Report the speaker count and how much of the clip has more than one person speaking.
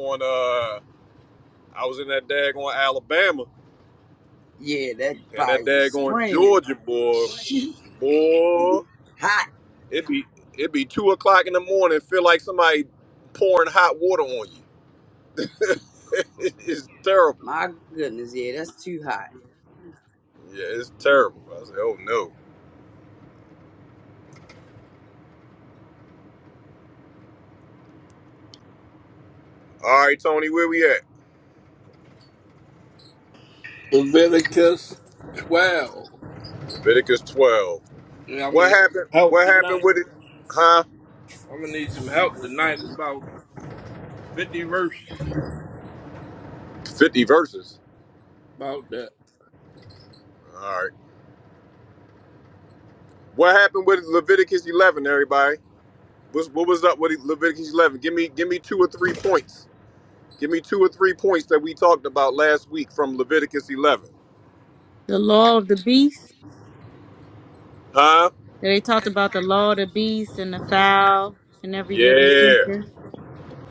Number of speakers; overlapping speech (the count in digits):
4, about 4%